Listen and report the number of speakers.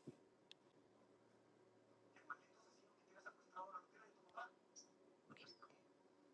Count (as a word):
zero